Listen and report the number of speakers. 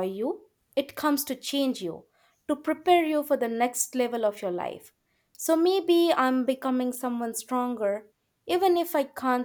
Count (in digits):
1